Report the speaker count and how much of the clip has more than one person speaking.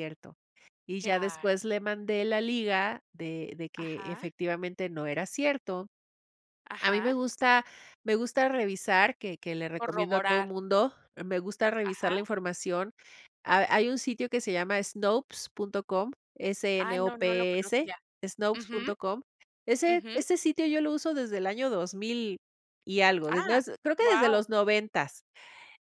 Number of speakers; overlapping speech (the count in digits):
2, about 18%